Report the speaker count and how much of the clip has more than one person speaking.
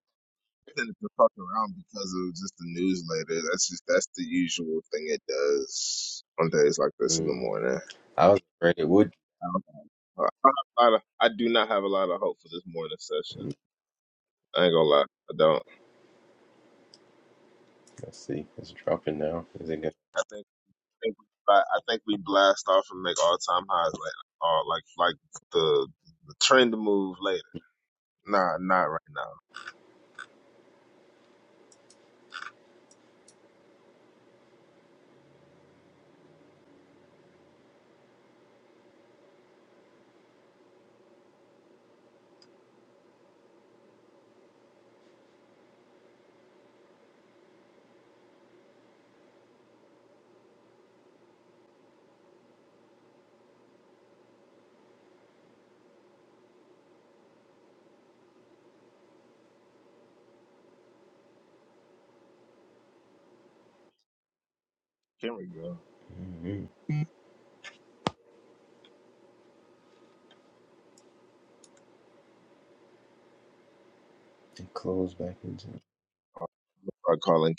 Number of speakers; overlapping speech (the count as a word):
two, under 1%